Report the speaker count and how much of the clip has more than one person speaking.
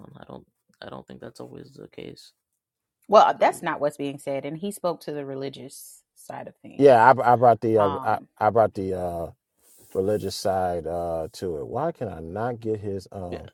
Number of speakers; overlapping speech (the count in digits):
3, about 7%